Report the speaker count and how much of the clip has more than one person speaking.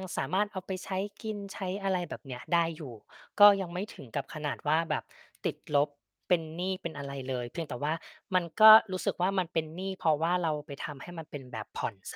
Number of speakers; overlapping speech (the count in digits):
1, no overlap